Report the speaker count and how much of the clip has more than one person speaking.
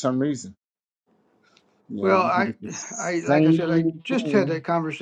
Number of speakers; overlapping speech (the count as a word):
two, about 26%